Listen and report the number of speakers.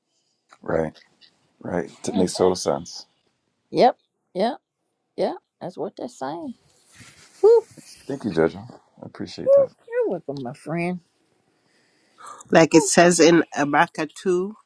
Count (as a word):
three